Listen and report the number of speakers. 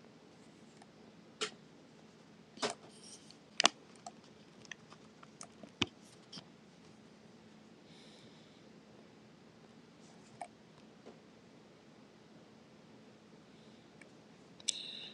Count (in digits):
0